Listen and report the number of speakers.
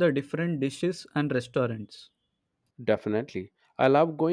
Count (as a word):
two